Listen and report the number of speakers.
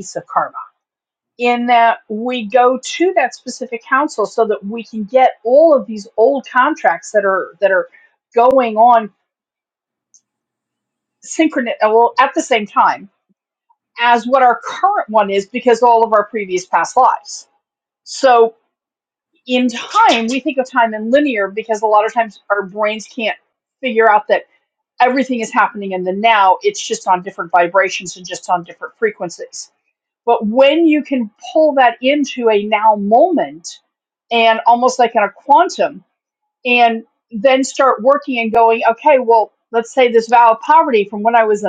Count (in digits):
1